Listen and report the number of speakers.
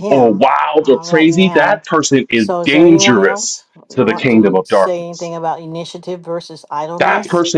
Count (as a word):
two